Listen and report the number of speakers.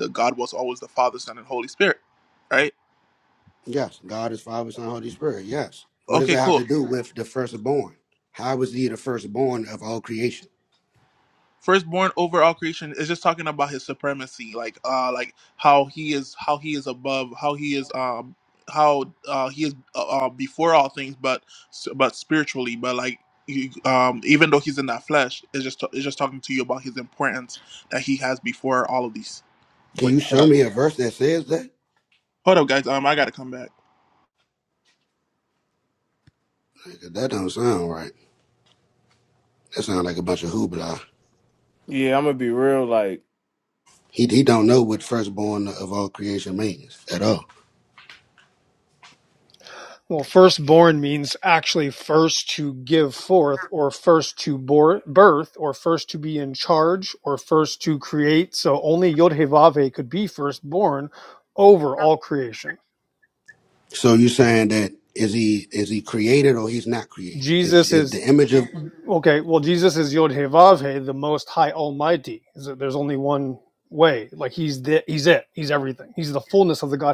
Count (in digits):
4